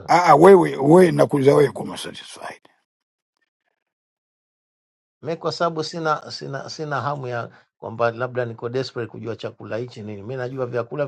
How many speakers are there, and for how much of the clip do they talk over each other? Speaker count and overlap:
2, about 2%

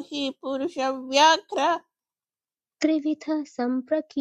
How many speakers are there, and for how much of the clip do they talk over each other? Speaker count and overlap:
2, no overlap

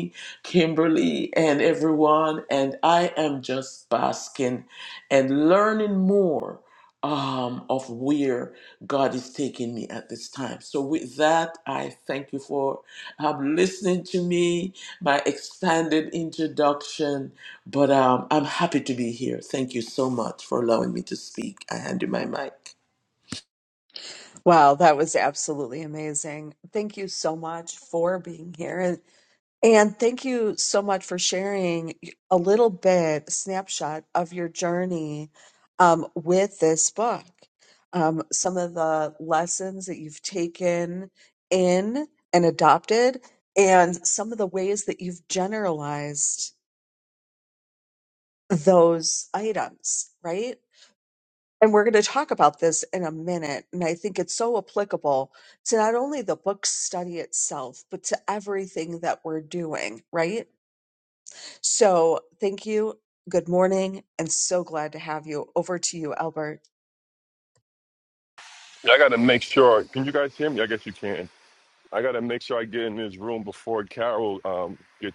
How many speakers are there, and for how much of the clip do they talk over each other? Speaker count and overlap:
3, no overlap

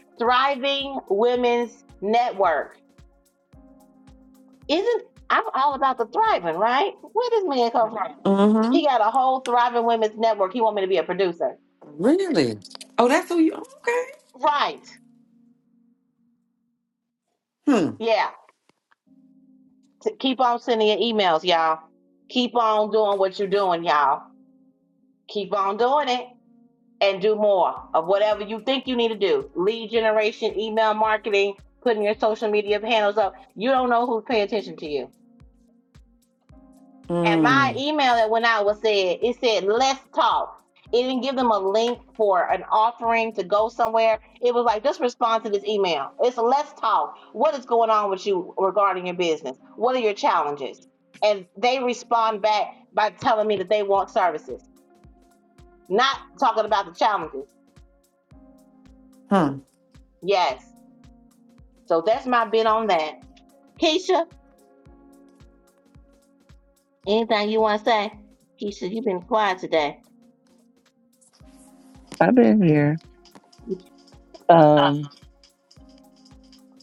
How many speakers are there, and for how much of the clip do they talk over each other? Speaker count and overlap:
3, about 1%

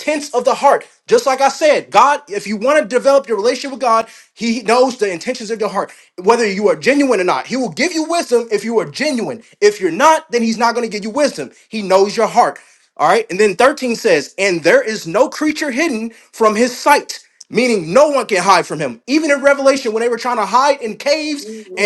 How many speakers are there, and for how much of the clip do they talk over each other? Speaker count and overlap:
1, no overlap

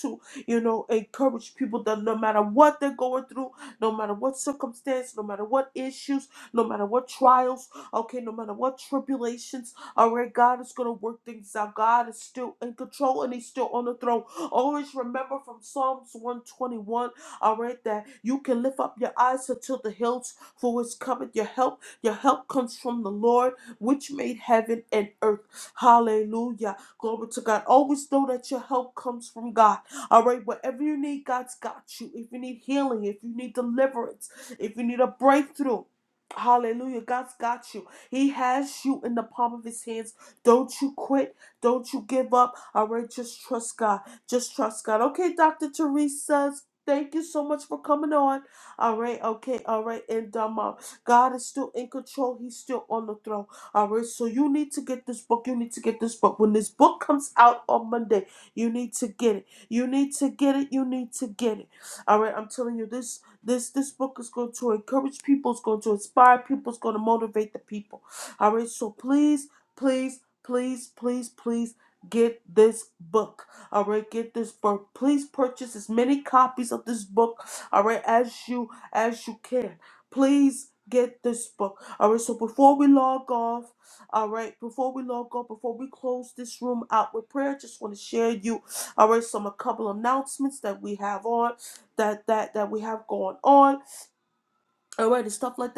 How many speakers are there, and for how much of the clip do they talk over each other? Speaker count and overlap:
1, no overlap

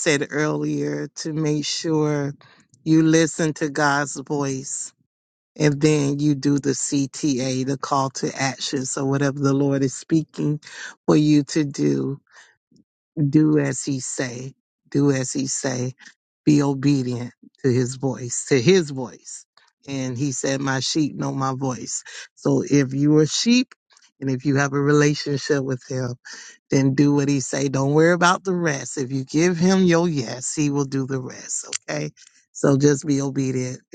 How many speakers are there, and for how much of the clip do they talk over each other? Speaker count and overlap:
1, no overlap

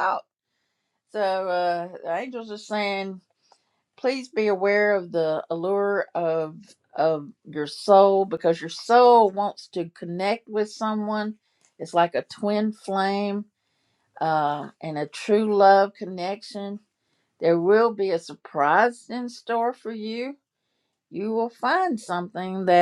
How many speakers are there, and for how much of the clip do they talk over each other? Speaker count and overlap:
1, no overlap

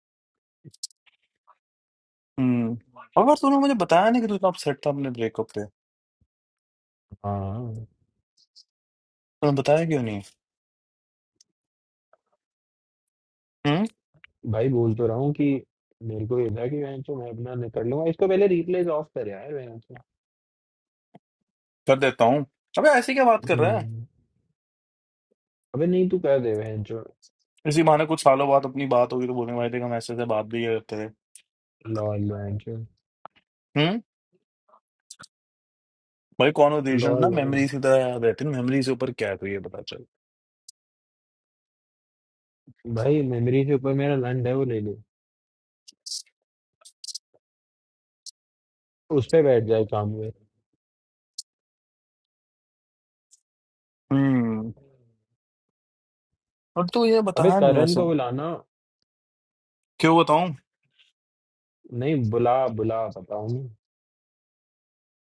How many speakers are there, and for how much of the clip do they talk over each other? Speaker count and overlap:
2, about 3%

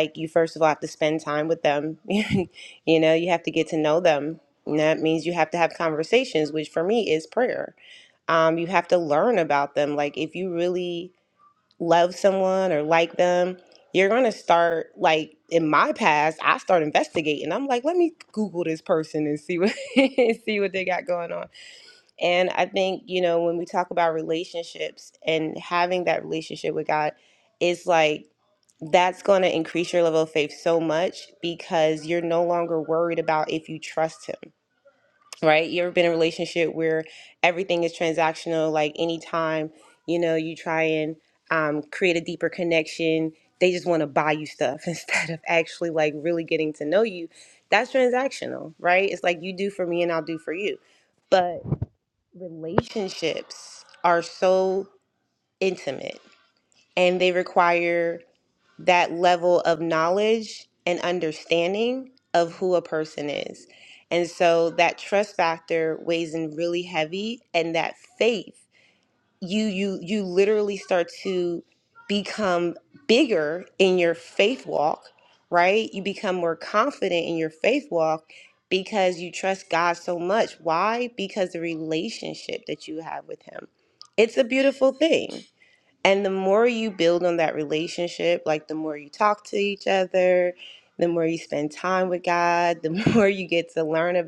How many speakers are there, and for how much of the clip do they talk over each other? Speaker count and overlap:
1, no overlap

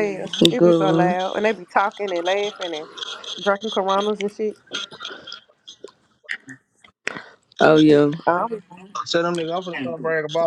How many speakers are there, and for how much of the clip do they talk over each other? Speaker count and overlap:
3, about 8%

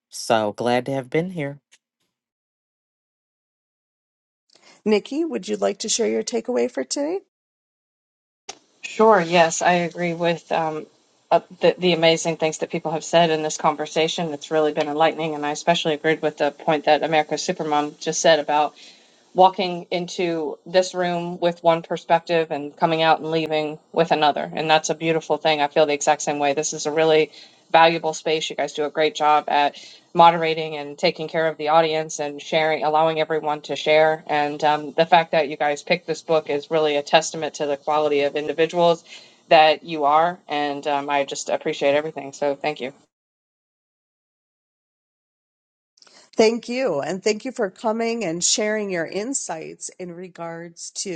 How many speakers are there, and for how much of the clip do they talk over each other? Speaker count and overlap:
3, no overlap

